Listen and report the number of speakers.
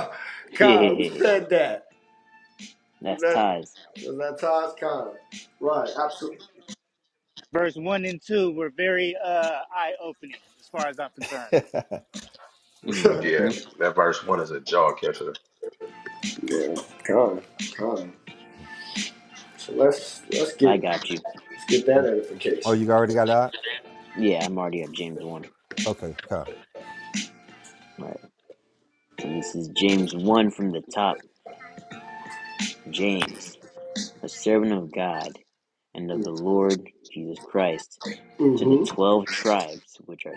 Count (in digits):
5